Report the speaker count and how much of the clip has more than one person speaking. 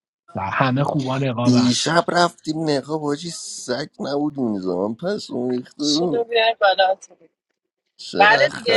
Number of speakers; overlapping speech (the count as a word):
three, about 15%